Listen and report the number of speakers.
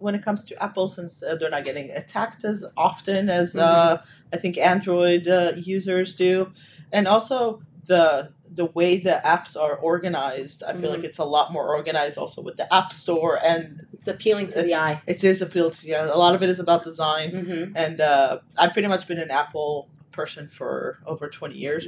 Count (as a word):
two